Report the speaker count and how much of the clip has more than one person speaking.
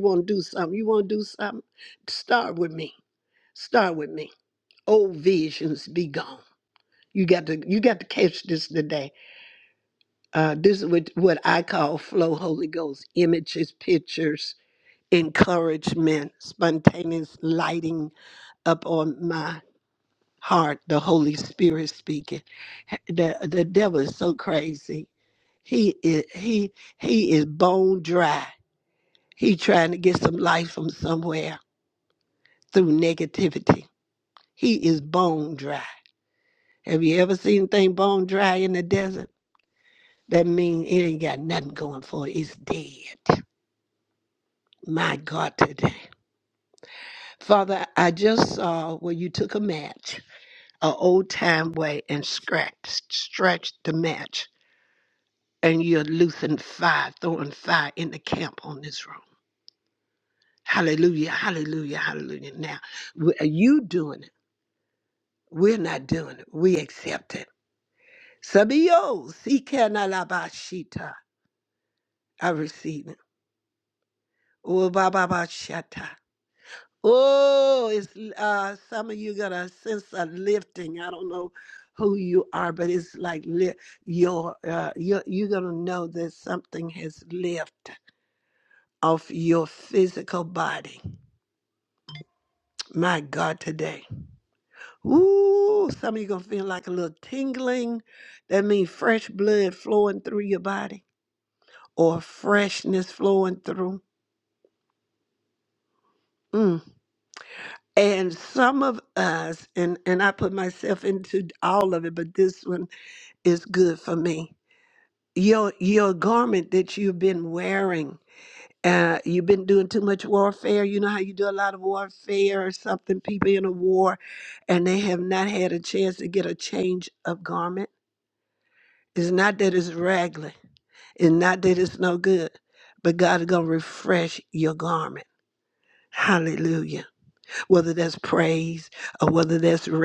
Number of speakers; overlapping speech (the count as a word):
one, no overlap